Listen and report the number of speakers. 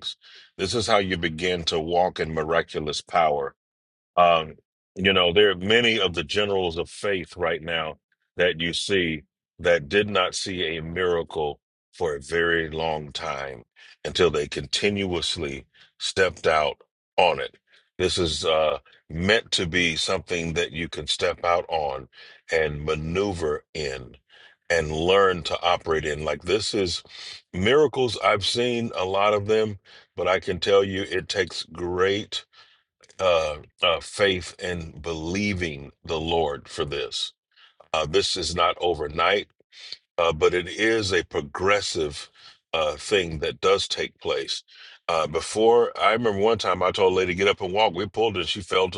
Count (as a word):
one